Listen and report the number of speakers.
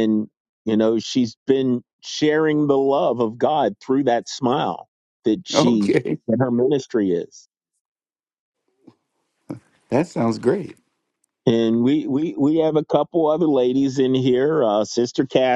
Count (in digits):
2